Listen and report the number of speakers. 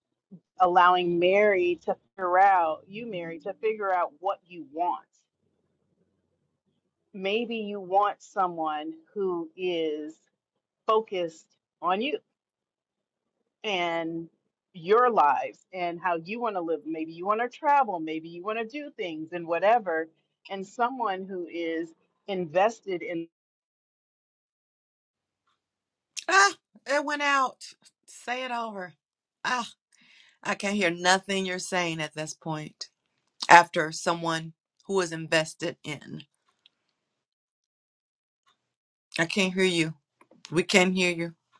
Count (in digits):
2